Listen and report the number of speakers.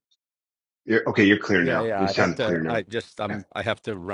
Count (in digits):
2